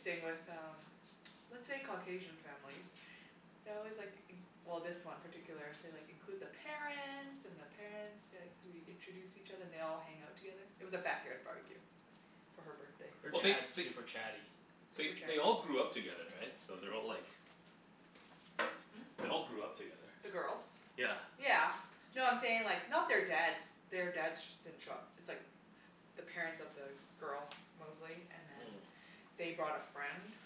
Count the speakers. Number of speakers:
3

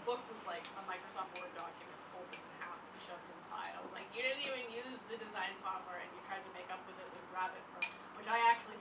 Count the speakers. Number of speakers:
1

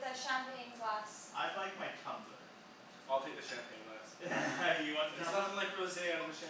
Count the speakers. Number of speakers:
3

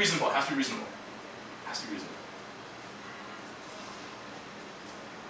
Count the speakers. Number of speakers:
1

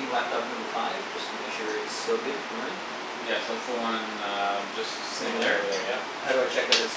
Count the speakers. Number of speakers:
2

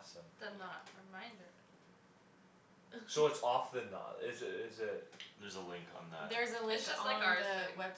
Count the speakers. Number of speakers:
4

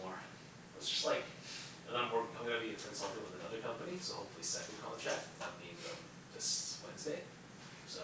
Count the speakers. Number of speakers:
1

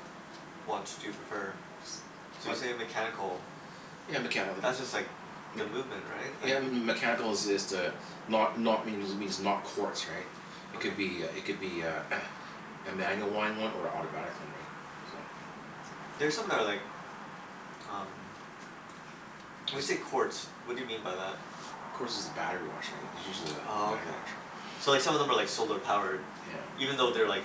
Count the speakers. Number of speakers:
2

